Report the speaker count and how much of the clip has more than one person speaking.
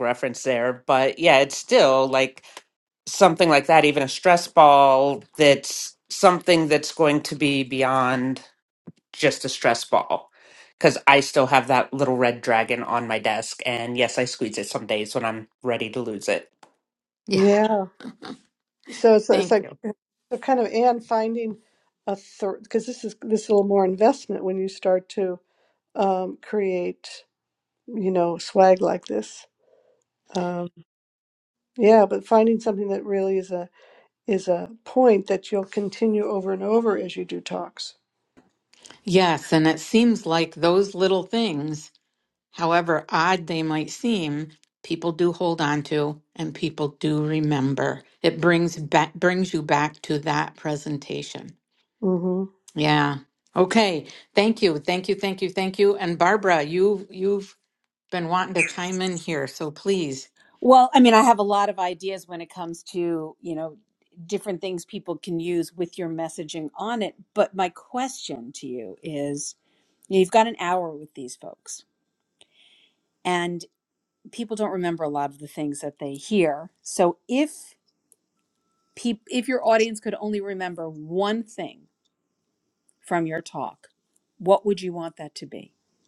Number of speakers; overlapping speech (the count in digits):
4, about 1%